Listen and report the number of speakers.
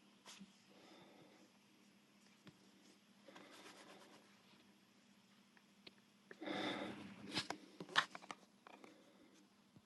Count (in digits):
0